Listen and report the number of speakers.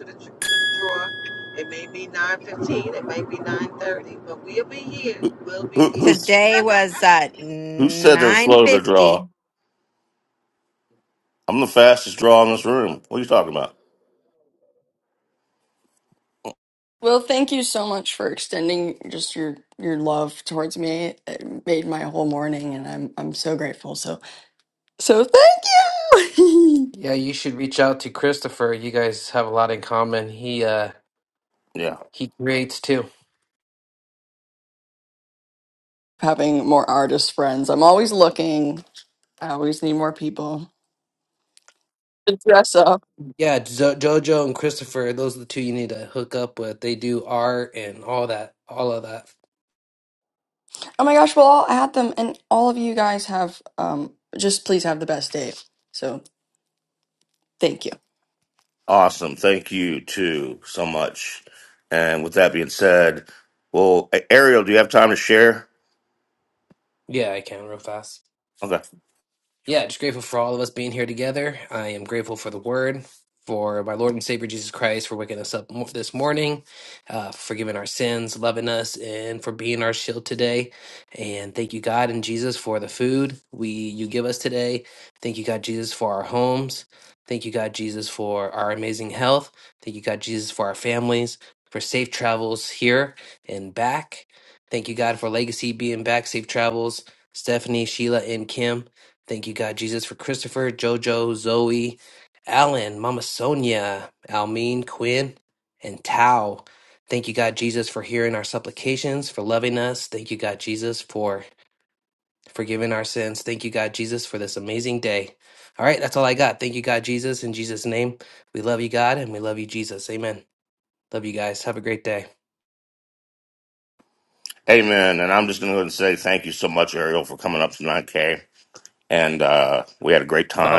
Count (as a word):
five